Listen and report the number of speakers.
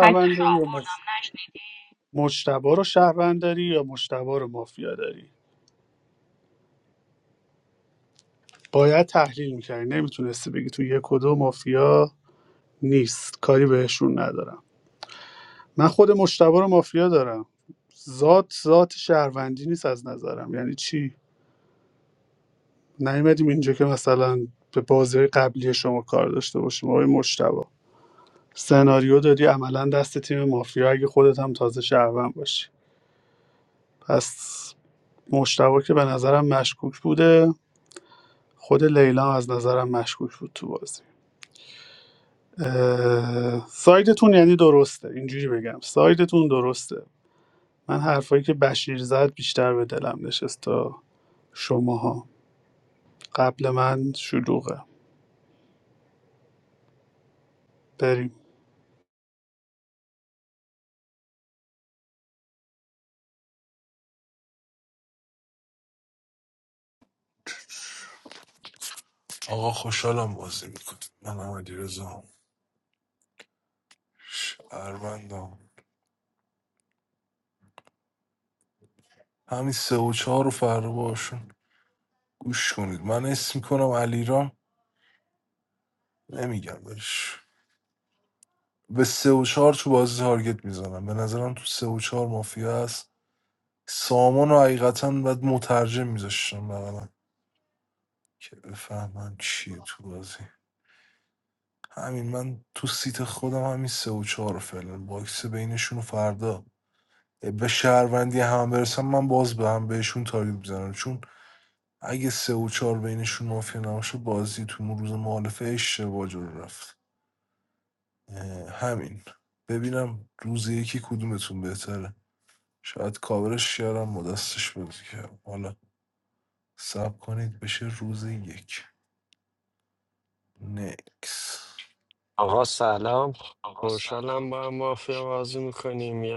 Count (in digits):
4